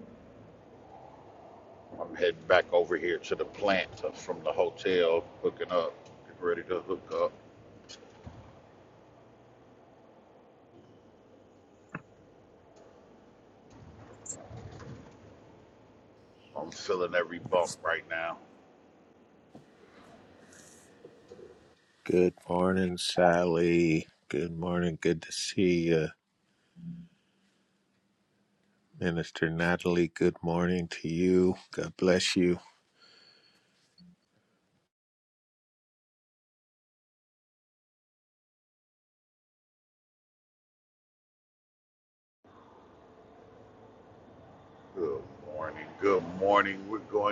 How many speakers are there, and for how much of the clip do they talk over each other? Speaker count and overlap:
two, no overlap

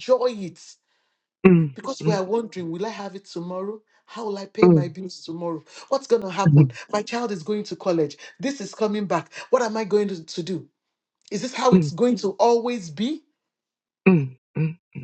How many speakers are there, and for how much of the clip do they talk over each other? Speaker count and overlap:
two, about 4%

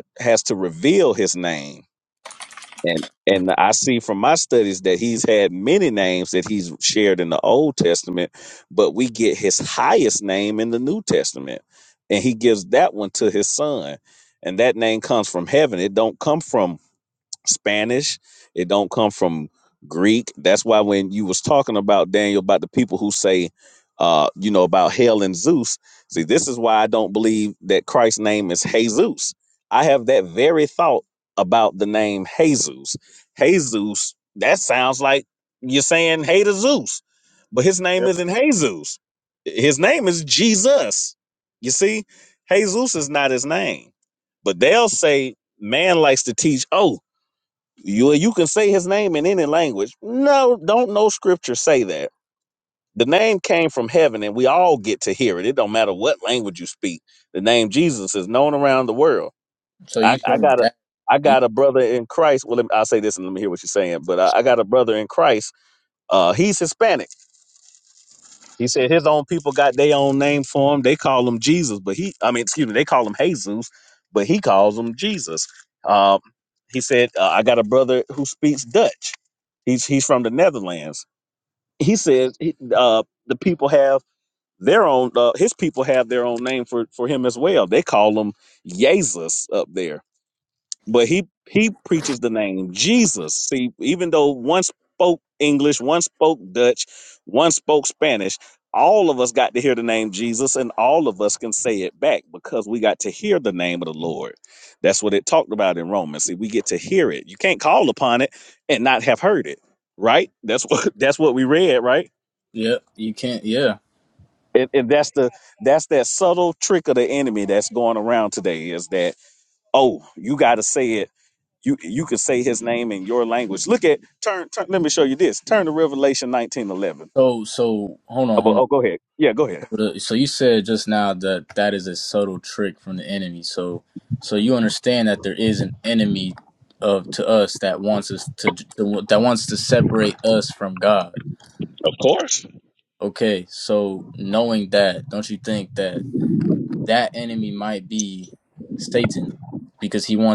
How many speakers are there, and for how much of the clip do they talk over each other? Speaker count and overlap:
two, about 1%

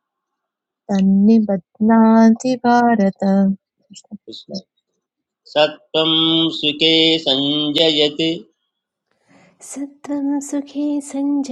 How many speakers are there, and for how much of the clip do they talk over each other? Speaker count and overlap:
three, no overlap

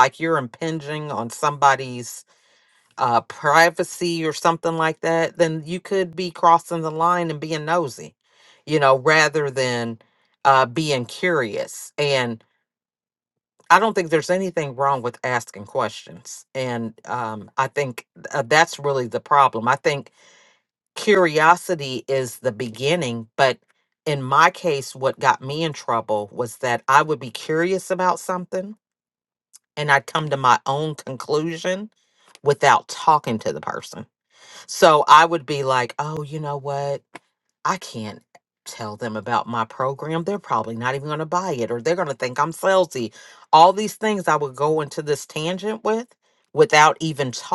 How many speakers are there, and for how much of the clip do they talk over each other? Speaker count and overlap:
one, no overlap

